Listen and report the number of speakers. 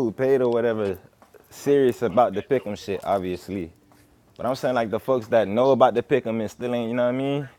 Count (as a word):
one